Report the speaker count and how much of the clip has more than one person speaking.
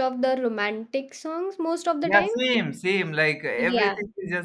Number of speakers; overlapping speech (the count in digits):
2, about 17%